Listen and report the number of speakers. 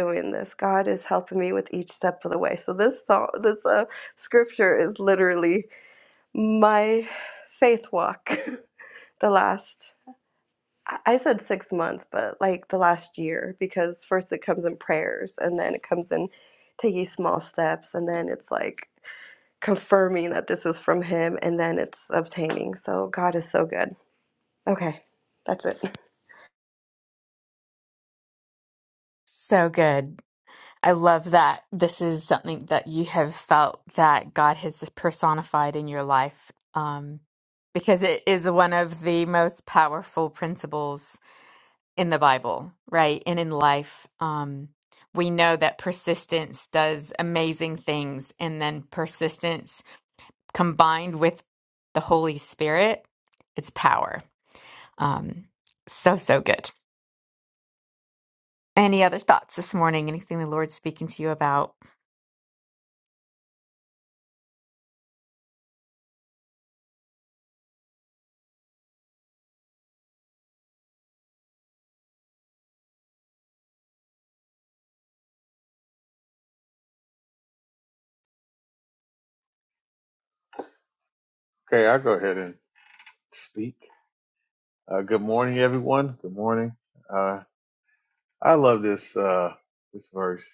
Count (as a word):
three